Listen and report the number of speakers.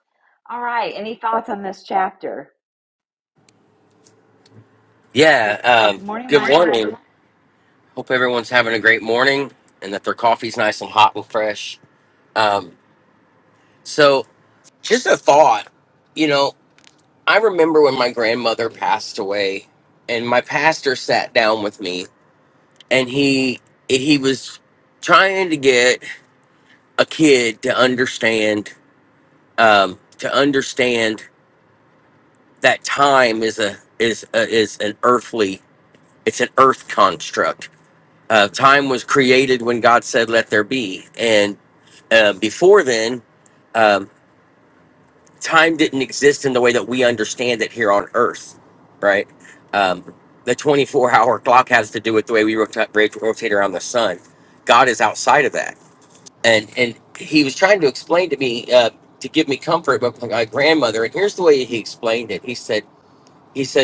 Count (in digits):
2